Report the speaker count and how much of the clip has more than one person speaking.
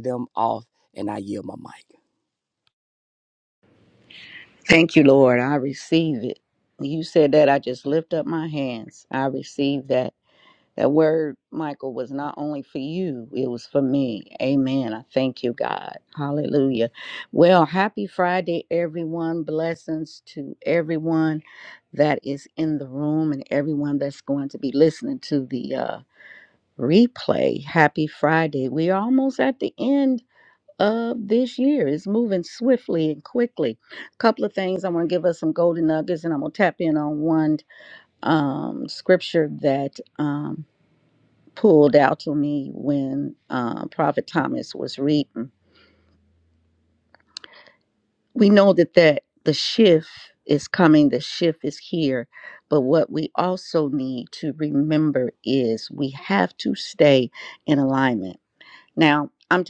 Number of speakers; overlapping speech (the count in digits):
2, no overlap